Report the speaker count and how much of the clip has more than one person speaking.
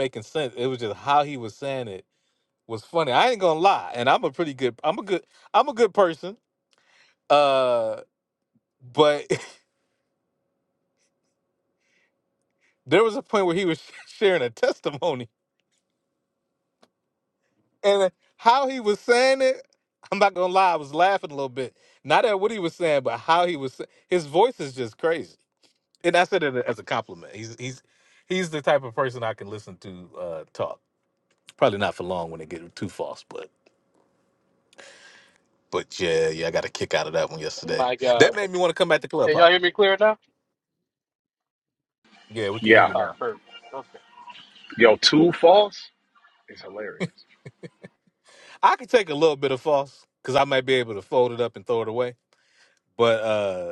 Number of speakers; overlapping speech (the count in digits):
3, about 2%